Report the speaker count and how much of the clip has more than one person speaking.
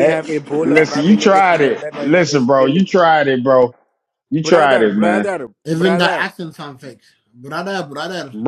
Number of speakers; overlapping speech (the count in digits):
3, about 48%